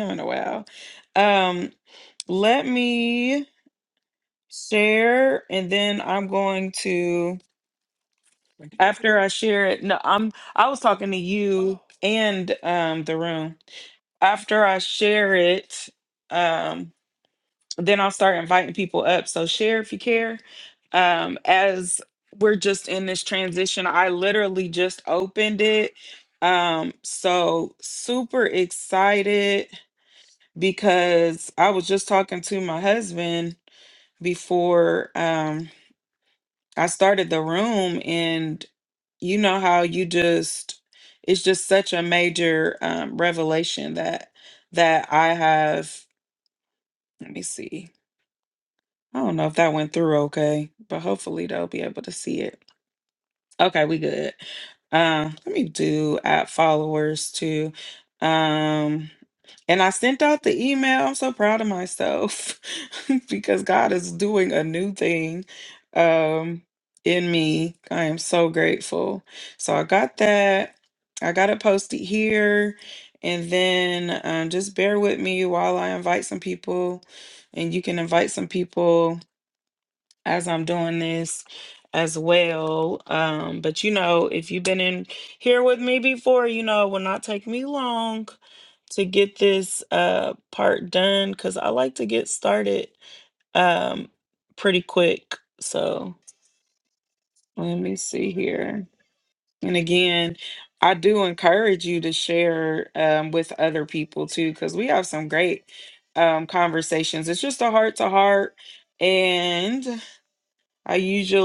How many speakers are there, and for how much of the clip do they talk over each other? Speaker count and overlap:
1, no overlap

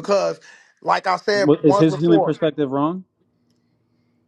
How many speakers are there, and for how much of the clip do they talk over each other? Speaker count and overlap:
2, about 23%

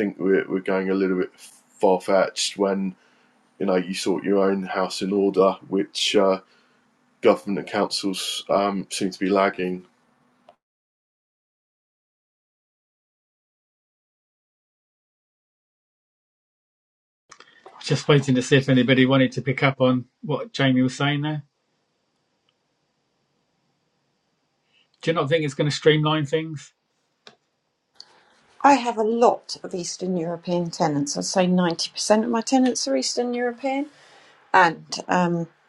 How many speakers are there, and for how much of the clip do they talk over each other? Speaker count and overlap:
3, no overlap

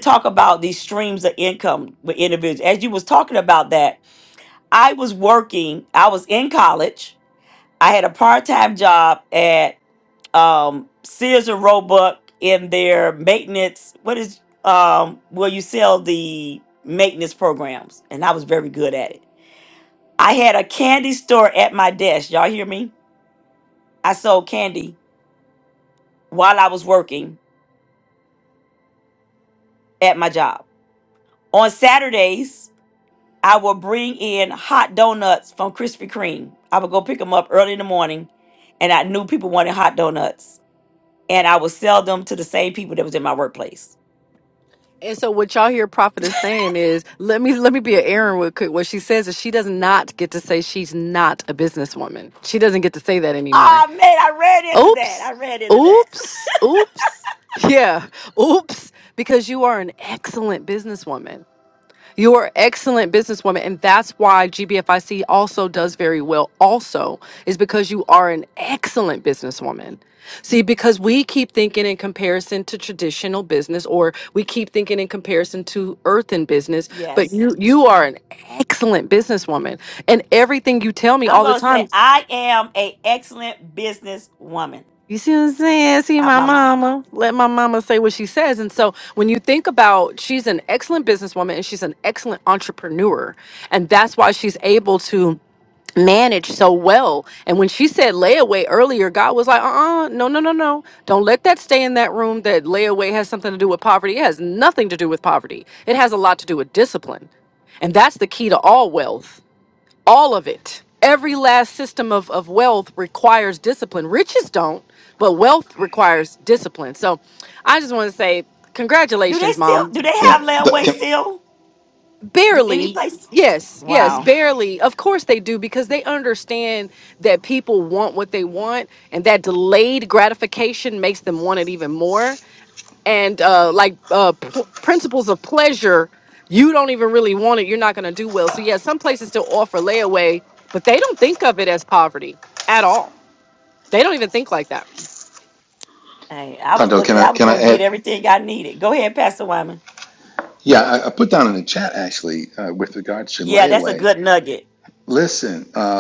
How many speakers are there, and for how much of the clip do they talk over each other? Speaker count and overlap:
3, about 4%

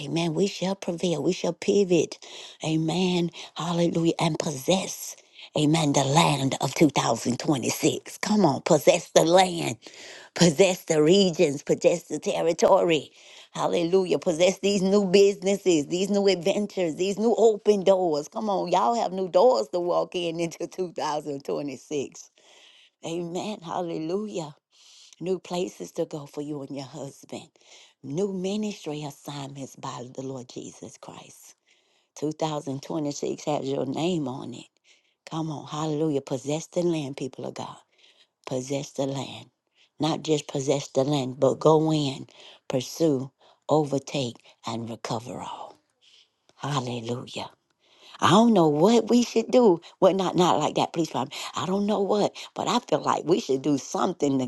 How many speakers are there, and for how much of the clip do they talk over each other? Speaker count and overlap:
1, no overlap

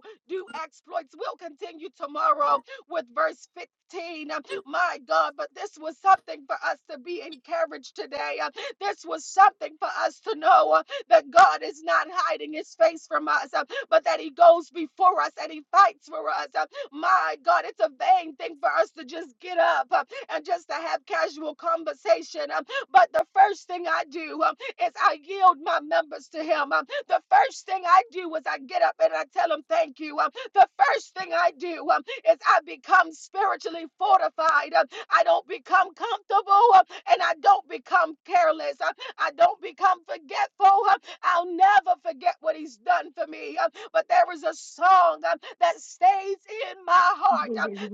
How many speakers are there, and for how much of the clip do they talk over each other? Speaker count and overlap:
1, no overlap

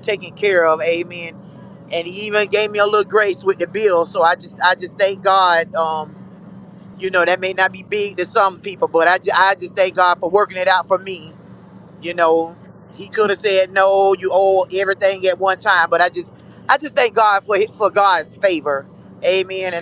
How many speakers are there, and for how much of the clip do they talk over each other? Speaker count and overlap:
1, no overlap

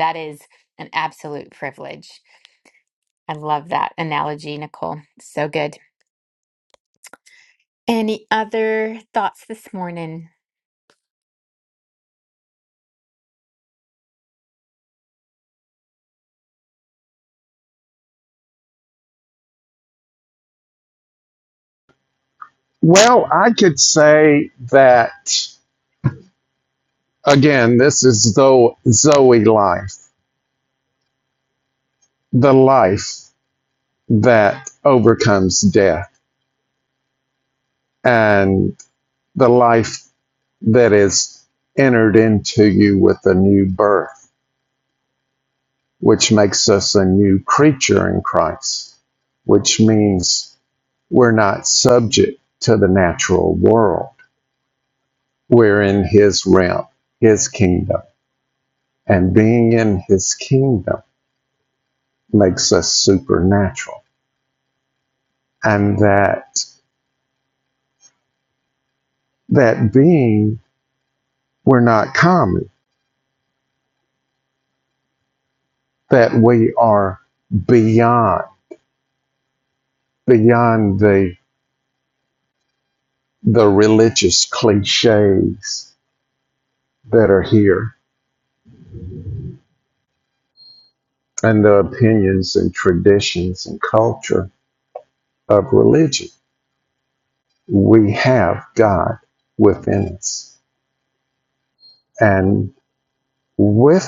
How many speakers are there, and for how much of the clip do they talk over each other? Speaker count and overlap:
2, no overlap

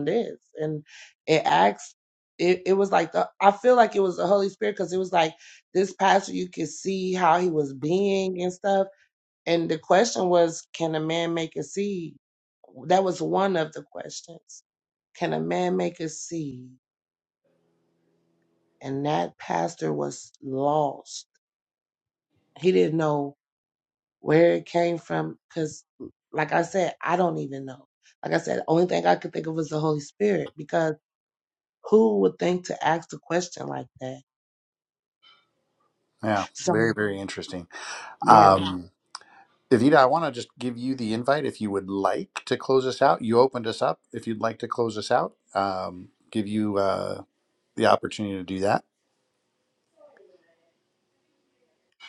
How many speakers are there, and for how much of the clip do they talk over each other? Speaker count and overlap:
2, about 1%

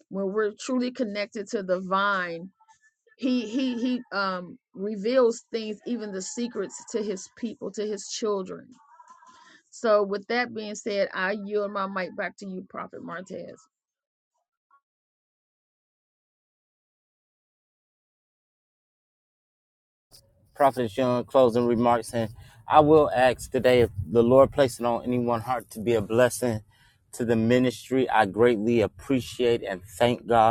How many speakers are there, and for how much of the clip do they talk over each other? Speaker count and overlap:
2, no overlap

